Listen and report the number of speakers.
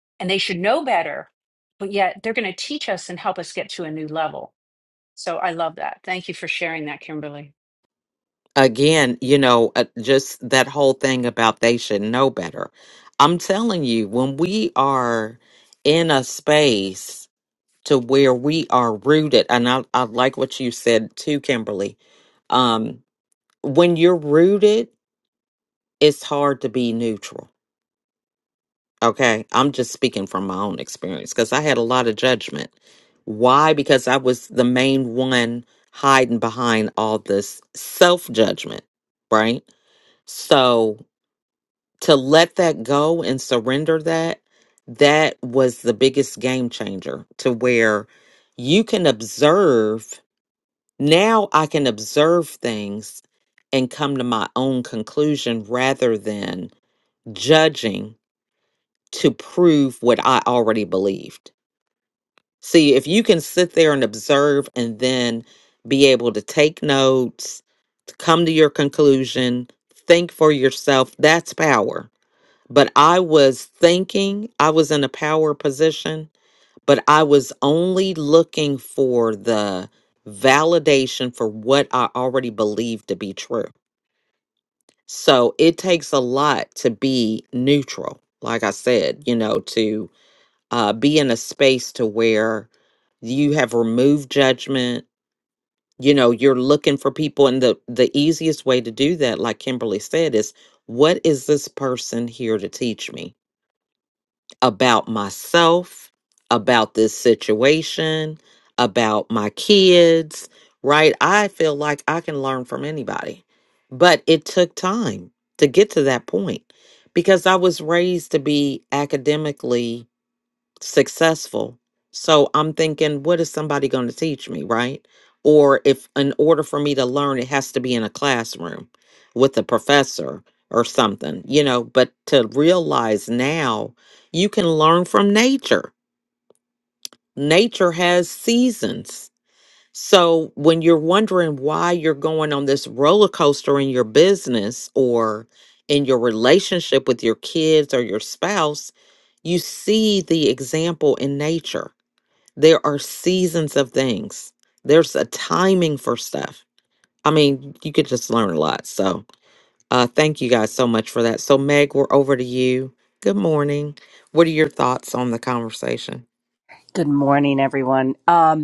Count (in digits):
3